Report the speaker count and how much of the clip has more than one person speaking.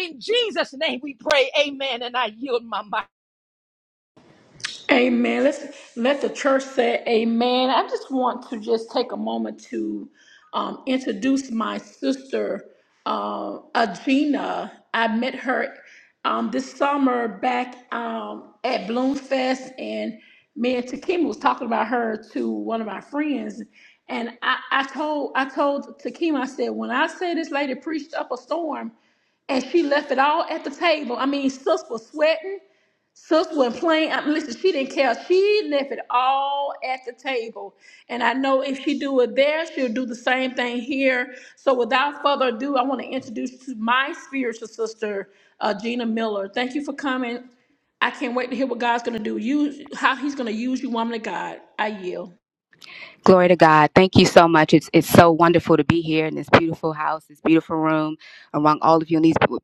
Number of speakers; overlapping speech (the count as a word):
three, no overlap